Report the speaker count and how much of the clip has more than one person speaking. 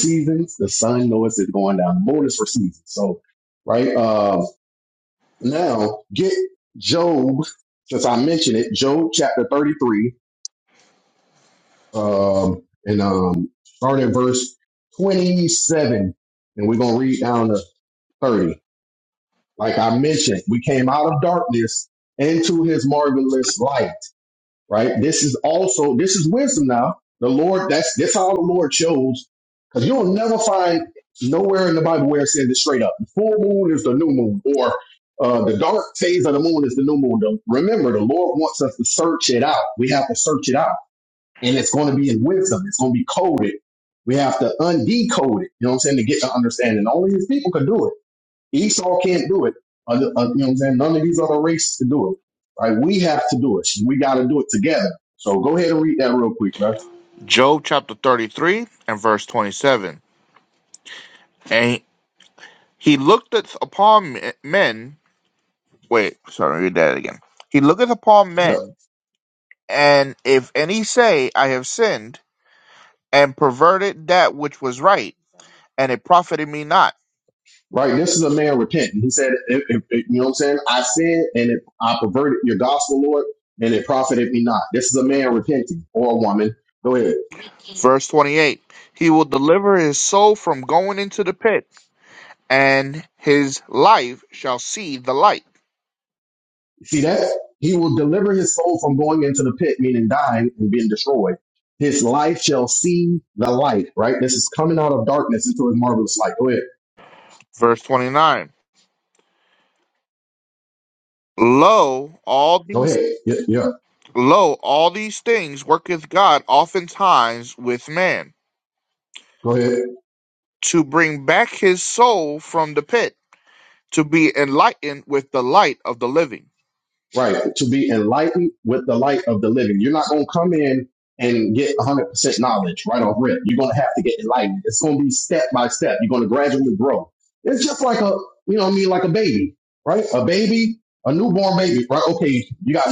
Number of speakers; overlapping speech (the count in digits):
2, under 1%